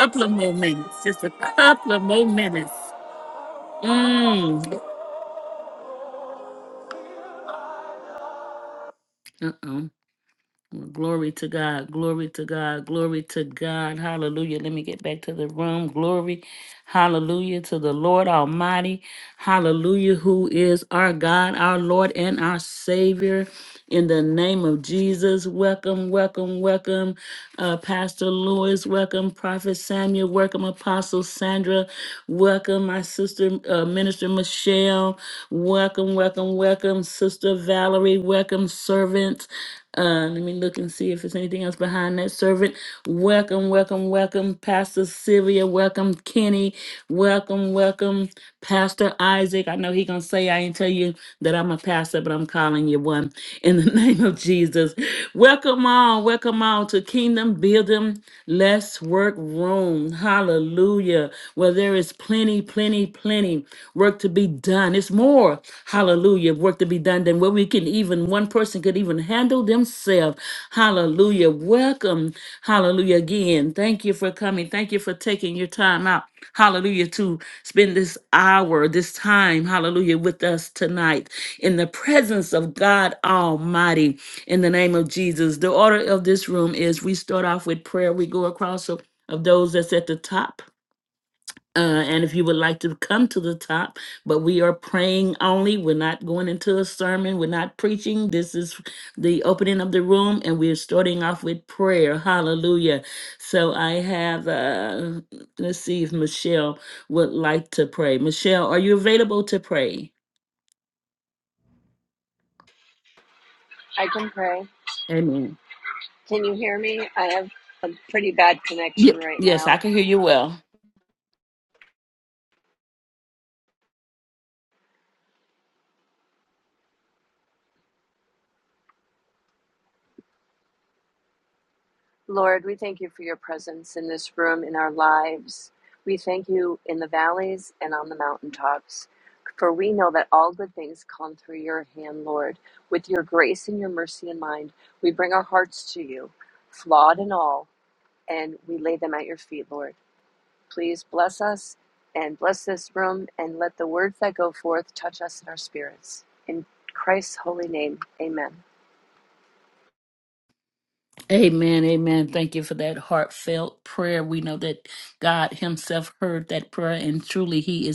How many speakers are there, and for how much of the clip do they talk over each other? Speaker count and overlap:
2, under 1%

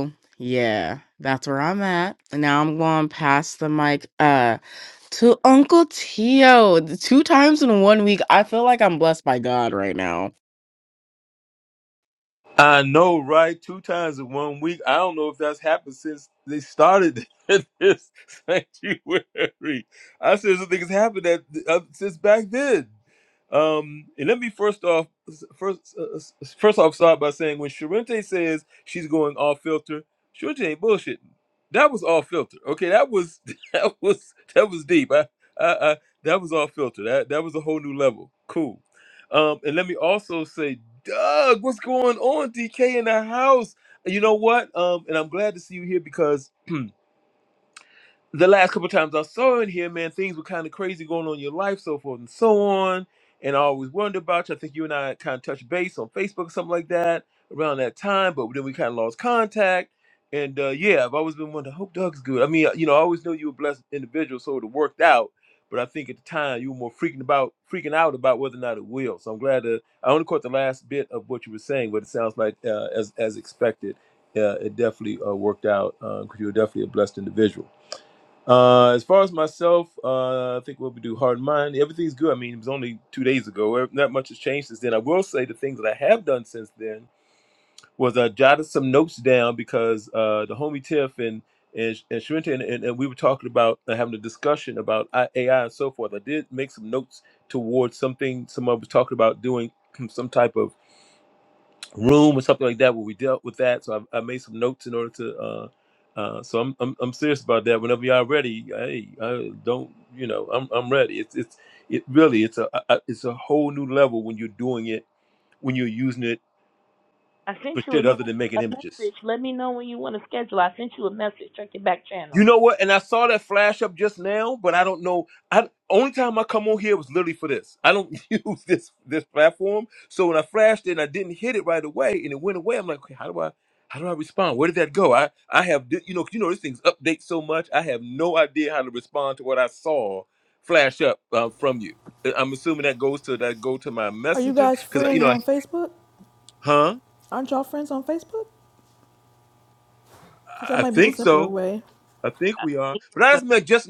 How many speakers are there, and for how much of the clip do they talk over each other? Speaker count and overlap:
4, about 2%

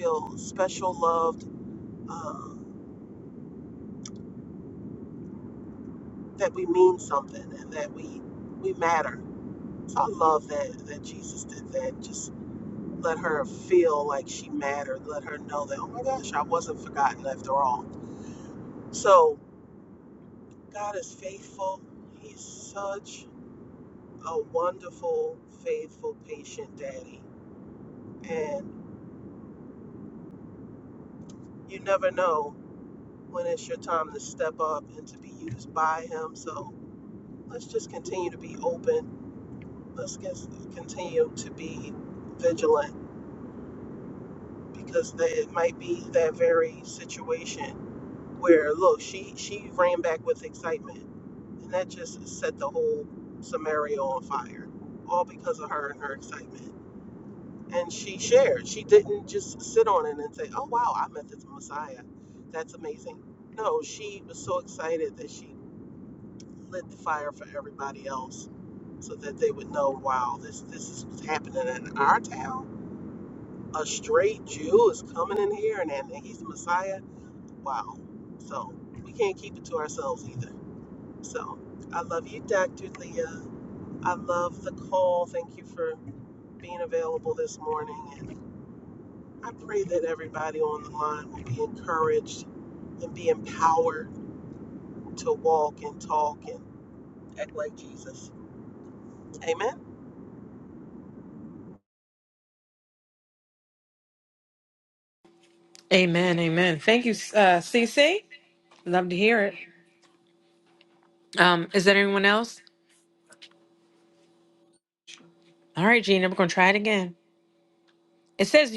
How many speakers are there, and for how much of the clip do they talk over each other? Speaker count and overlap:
2, no overlap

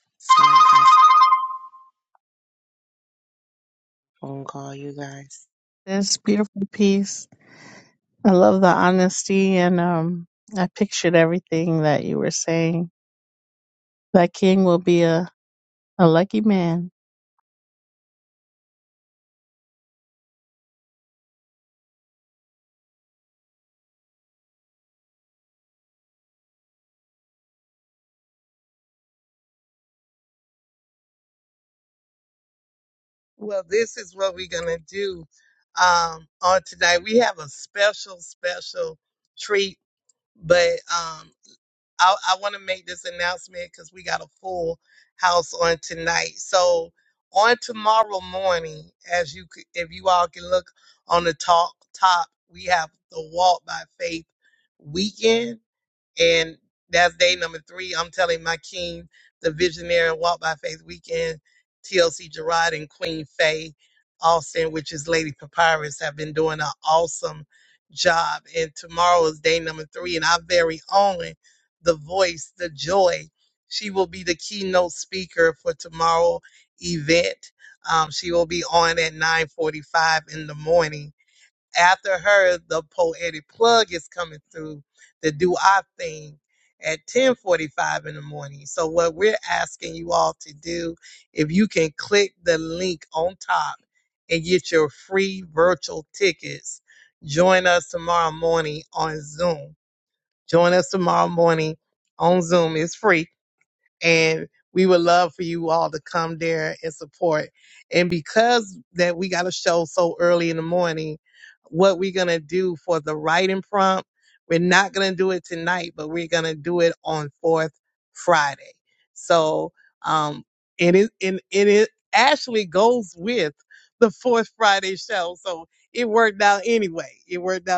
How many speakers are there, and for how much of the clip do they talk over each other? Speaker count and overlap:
3, no overlap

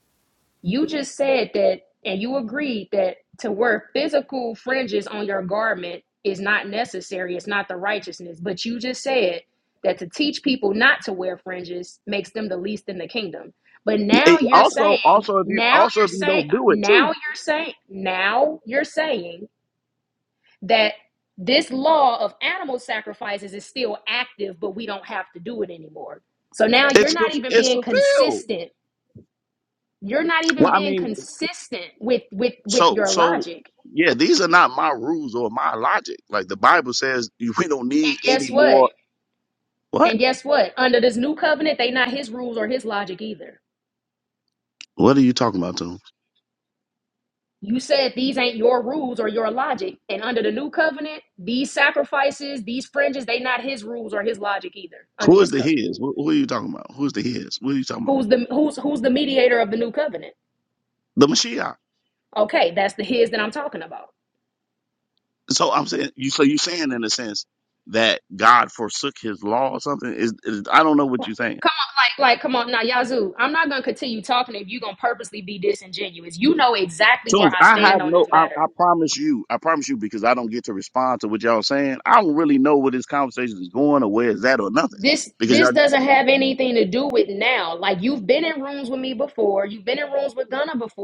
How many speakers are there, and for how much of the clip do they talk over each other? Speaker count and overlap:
2, about 10%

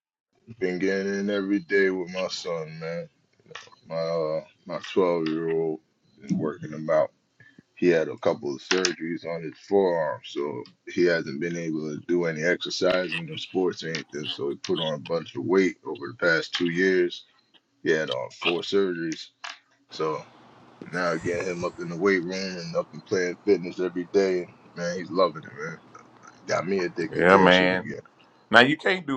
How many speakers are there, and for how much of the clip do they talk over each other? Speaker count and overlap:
2, about 2%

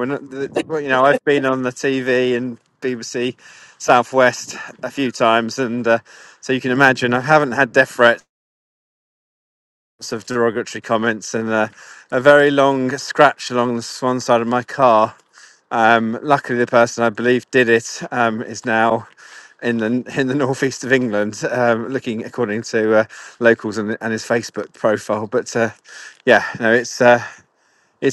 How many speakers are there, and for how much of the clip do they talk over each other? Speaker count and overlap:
1, no overlap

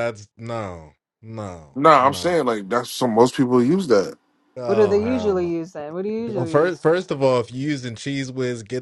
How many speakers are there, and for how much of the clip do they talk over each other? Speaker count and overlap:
3, about 18%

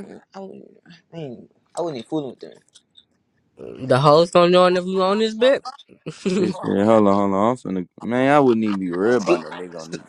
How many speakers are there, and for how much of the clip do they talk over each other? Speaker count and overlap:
3, about 4%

